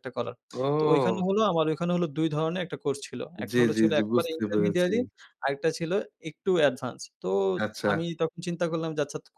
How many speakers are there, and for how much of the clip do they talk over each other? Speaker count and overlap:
2, about 22%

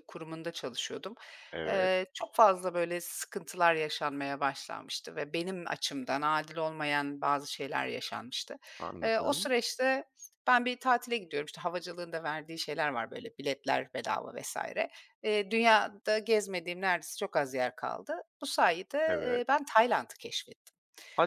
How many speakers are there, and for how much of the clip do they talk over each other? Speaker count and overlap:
2, about 5%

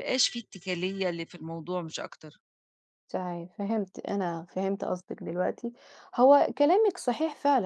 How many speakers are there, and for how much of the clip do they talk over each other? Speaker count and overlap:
2, no overlap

